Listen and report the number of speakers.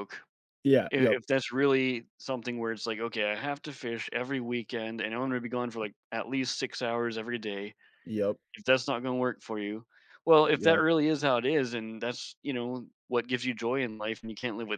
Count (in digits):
2